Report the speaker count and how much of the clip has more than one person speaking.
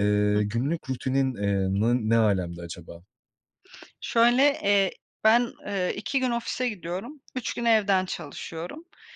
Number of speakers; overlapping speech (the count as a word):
two, about 1%